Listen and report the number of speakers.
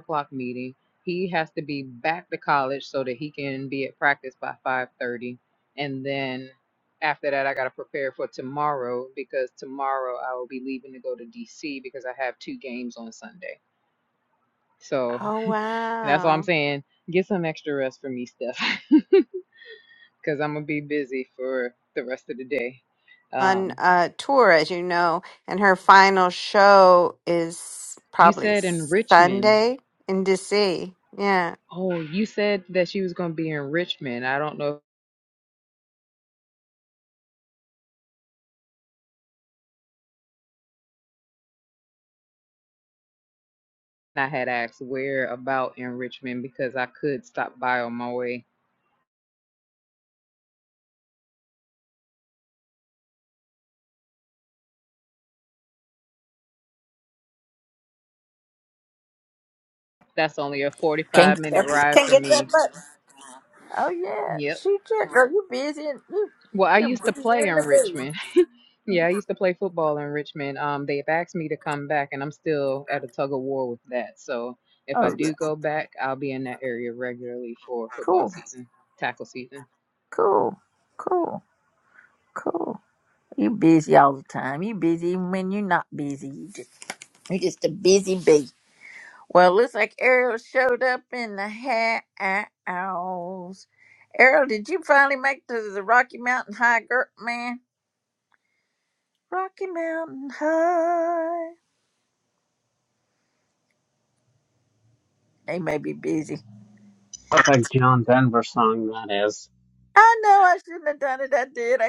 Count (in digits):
4